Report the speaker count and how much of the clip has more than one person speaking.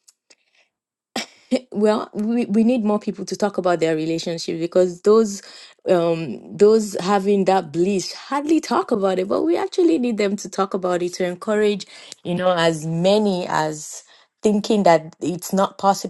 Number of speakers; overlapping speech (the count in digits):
1, no overlap